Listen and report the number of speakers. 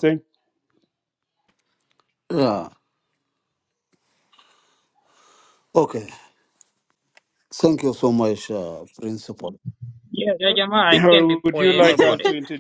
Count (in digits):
3